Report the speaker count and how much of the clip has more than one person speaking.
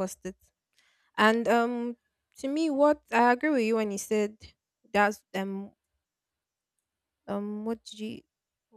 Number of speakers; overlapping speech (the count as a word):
one, no overlap